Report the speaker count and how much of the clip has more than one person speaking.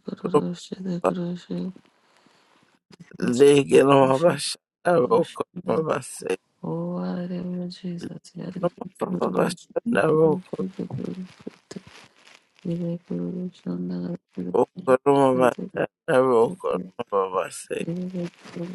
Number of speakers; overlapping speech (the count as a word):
two, about 18%